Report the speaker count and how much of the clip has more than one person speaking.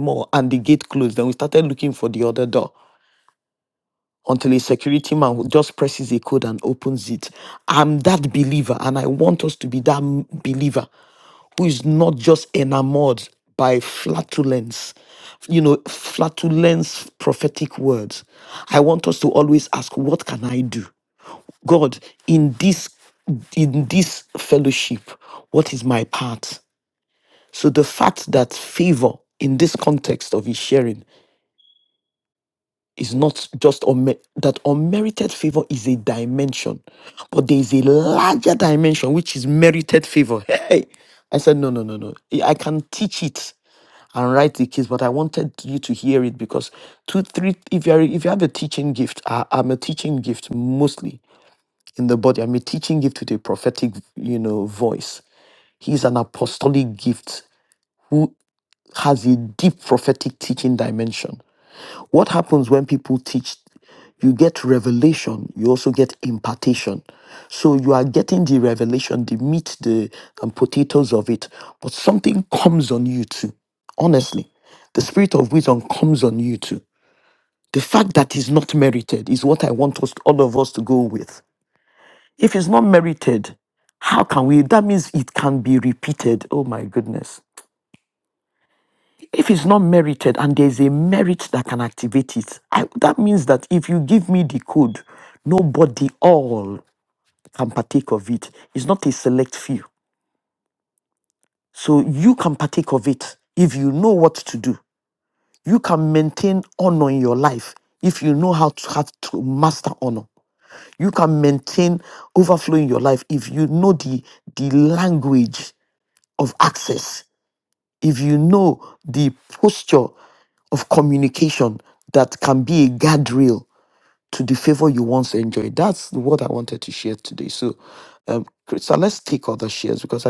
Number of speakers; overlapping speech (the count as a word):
one, no overlap